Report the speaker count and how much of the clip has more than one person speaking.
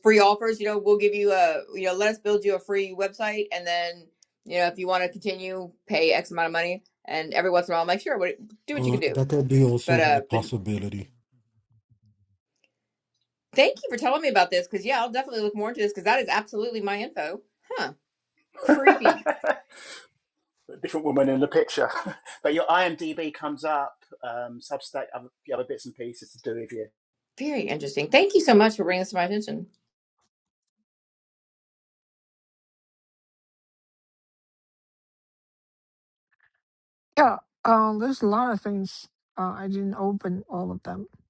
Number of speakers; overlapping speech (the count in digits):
4, about 2%